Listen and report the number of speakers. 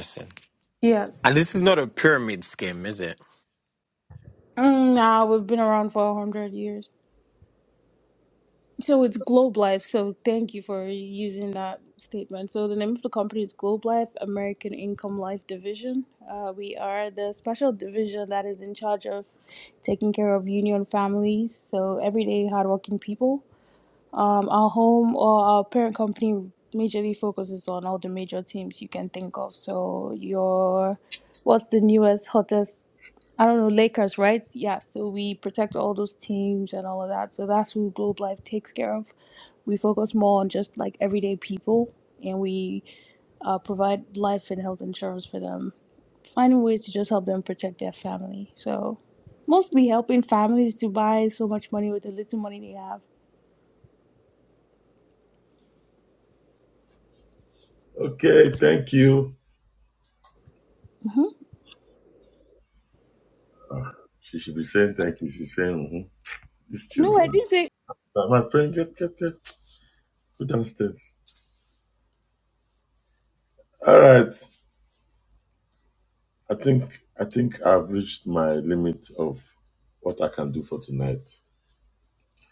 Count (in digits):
3